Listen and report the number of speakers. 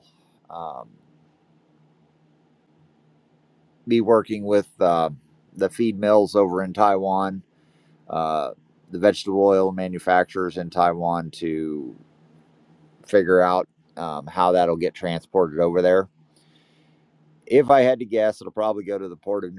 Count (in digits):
1